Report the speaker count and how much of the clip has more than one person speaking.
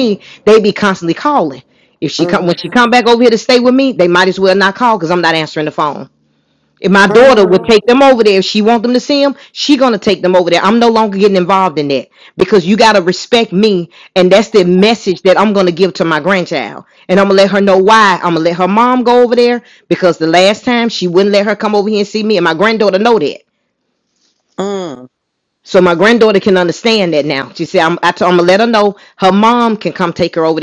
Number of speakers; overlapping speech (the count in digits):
2, about 4%